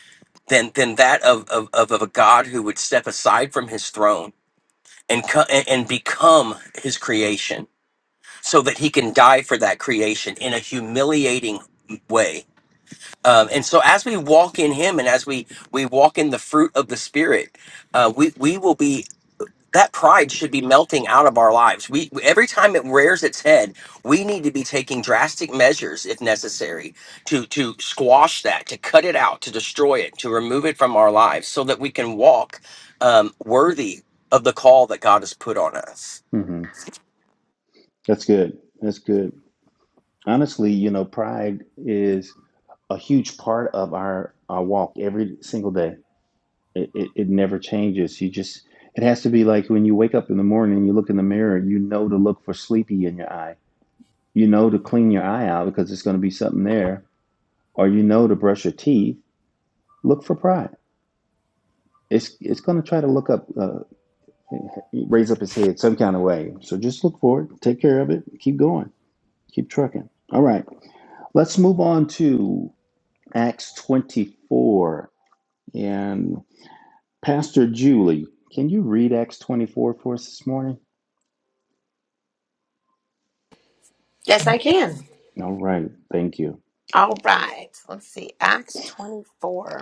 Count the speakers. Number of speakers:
3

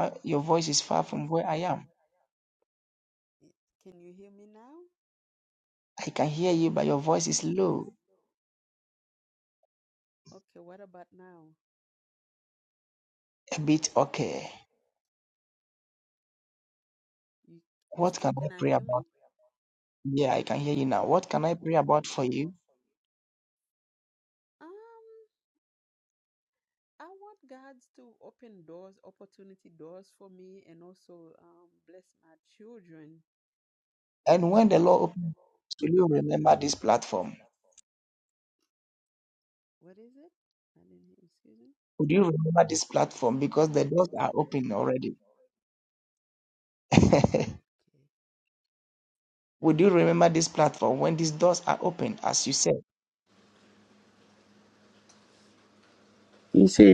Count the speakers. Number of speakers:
2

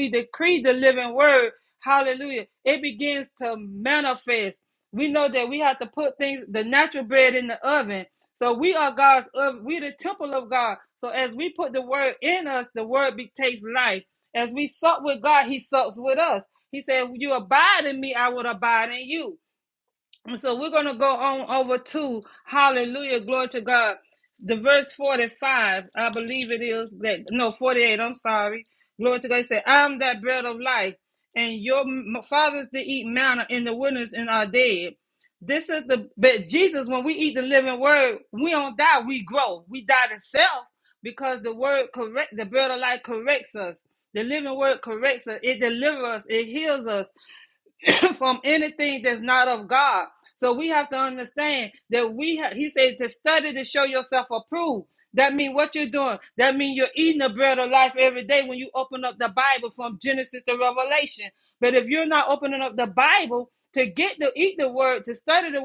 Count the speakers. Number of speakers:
1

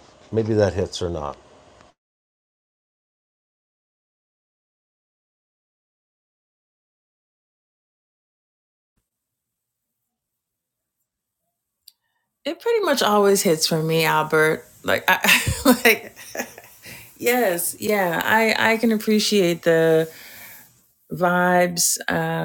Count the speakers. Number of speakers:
2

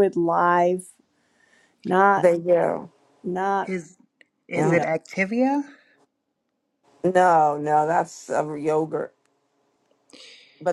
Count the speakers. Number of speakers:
3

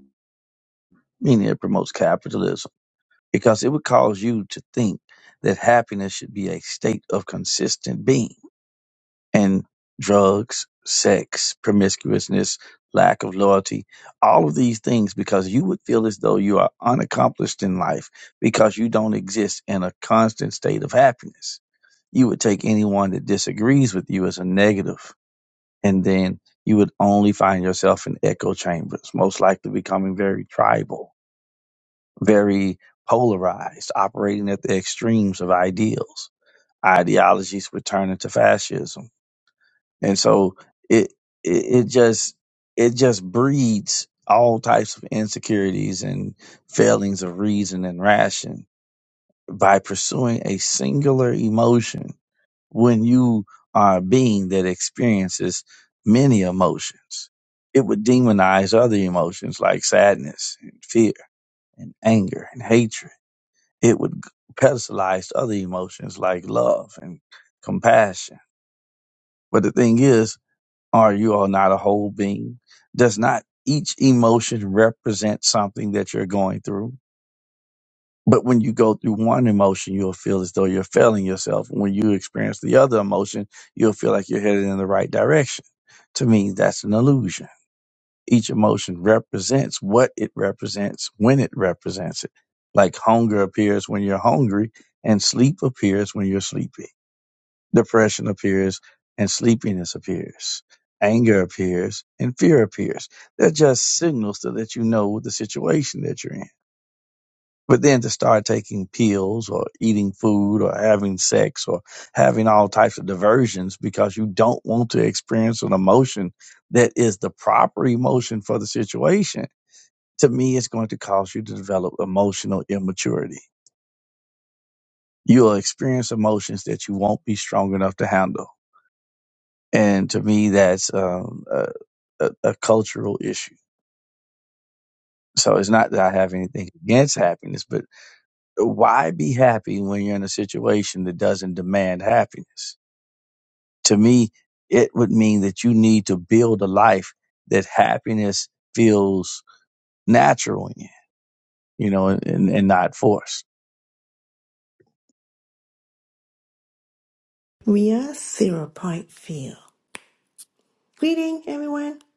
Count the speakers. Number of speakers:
2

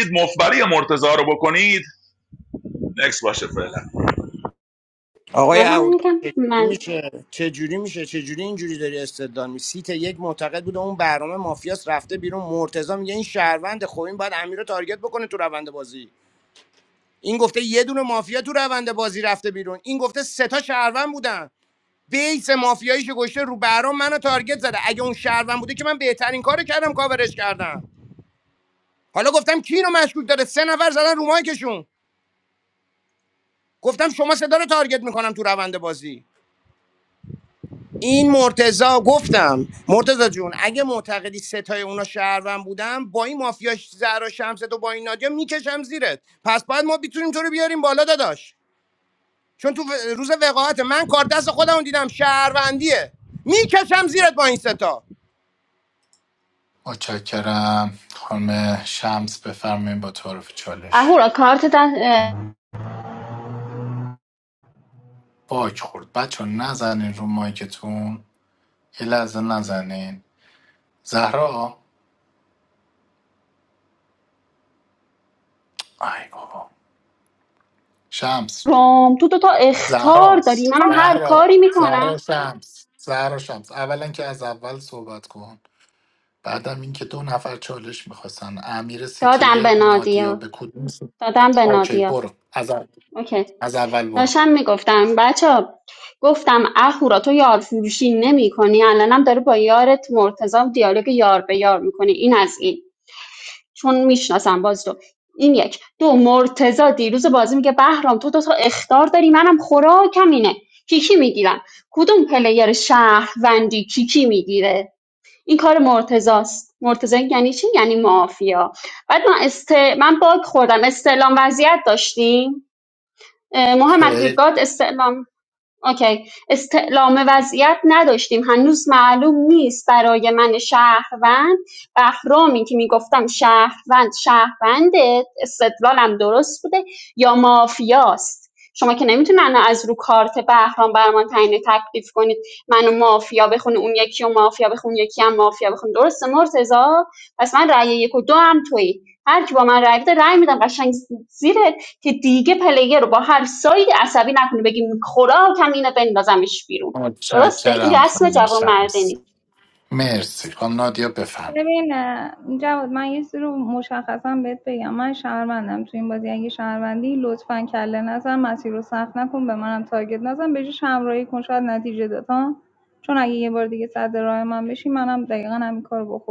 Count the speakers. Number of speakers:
5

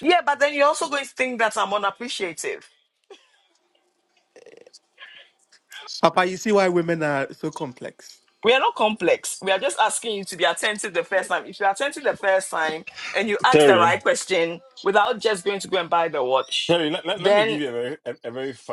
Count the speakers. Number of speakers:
3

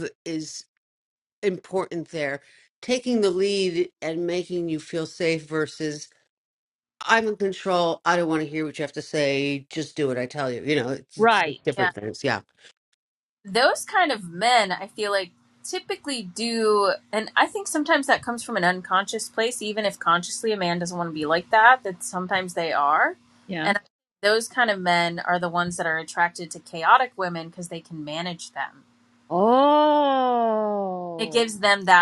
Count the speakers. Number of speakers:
3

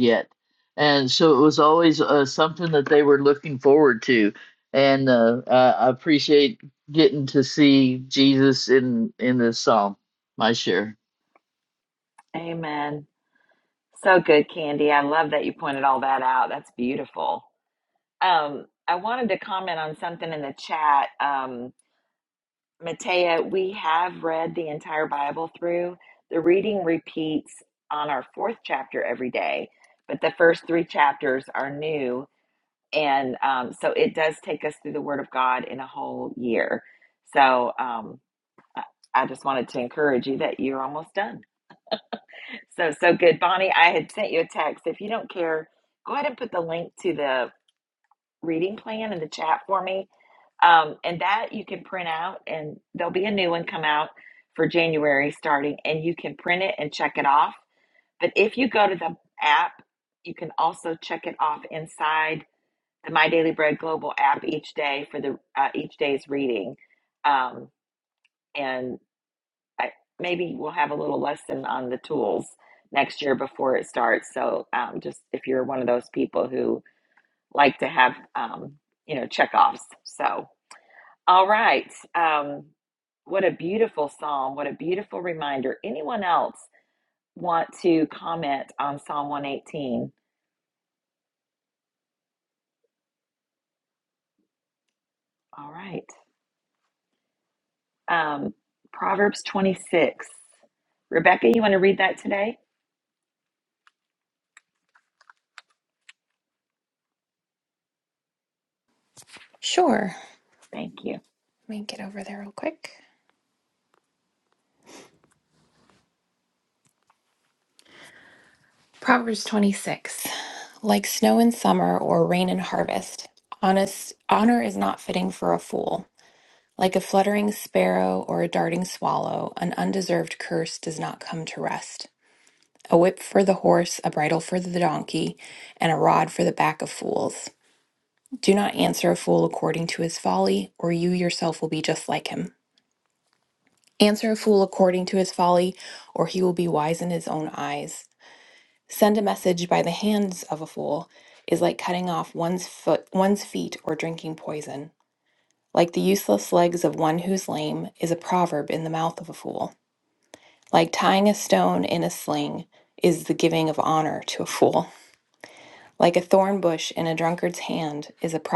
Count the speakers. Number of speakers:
3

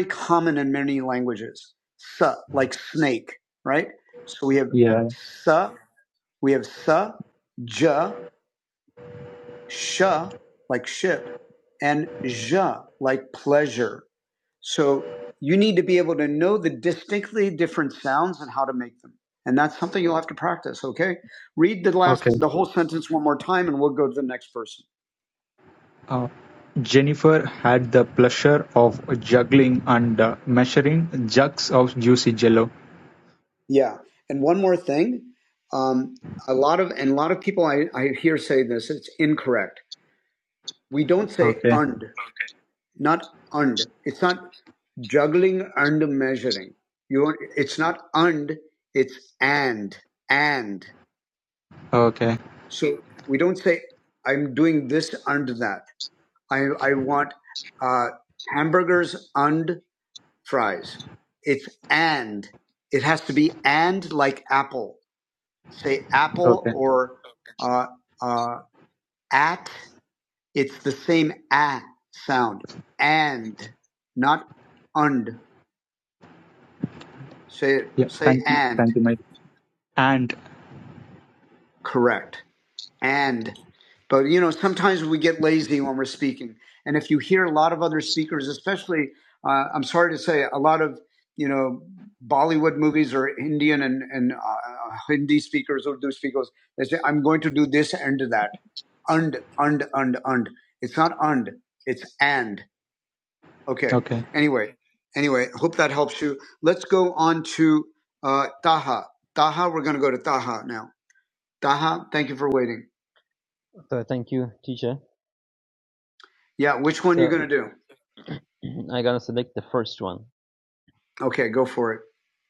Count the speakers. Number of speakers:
3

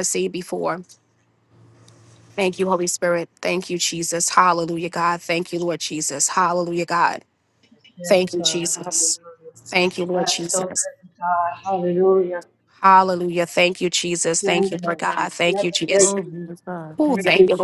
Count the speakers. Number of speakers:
3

